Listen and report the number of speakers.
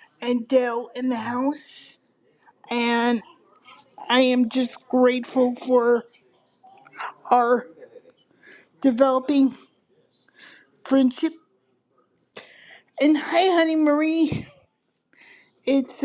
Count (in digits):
1